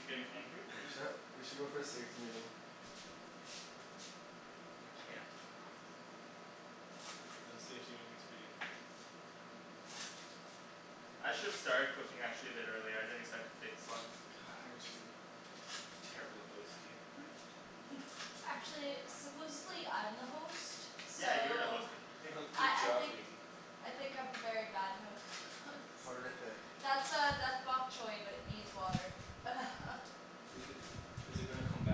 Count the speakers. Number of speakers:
four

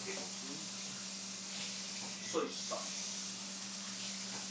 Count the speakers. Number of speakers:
one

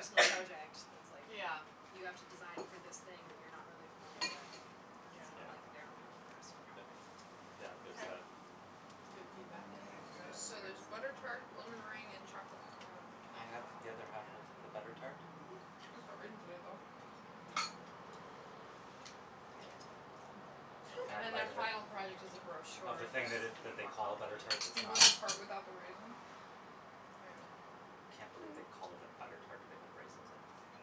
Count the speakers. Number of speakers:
four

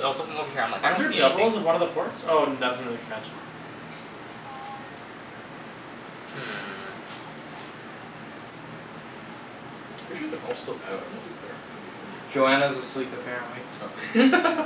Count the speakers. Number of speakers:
four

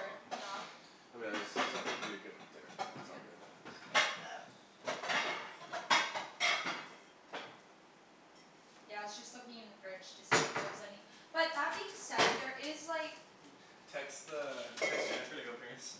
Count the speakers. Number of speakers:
three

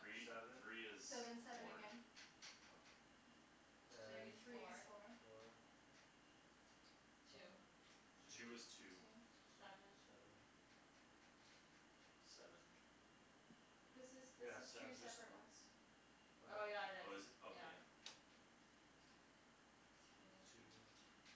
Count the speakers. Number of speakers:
four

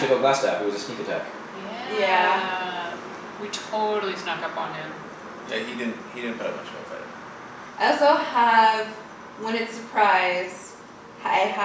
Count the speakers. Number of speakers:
four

